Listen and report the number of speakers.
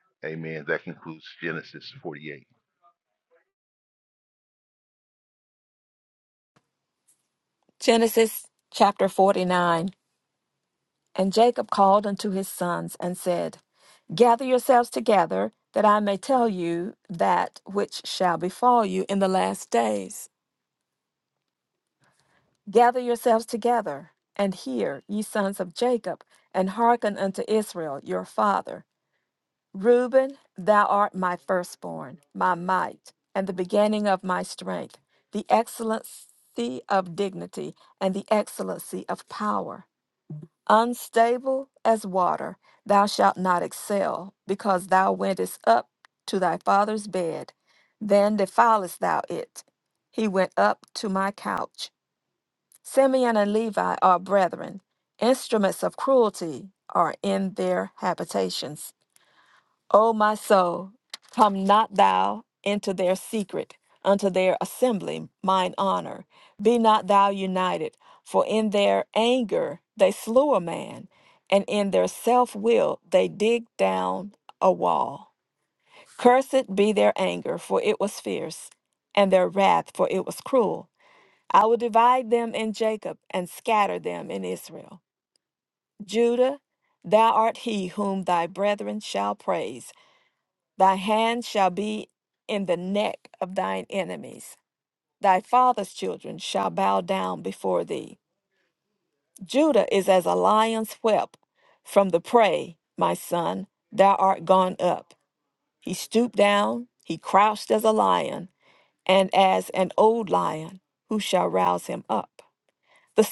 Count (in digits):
2